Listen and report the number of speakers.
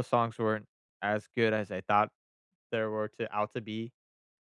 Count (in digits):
1